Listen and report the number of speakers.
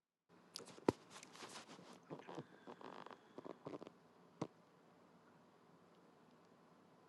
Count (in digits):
0